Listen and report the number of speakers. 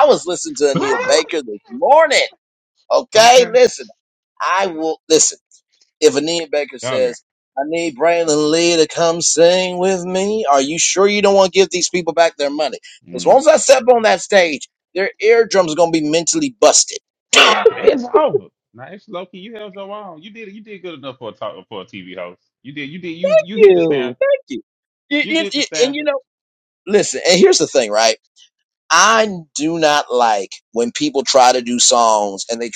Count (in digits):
2